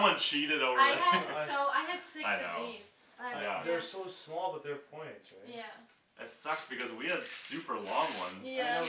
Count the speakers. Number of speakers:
three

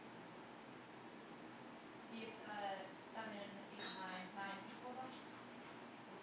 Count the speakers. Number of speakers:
one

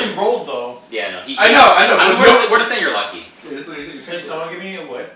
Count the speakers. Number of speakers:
three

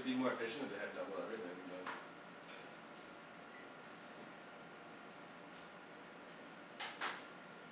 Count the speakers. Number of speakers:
one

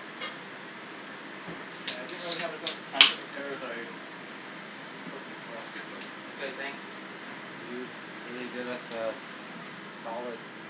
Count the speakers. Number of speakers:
two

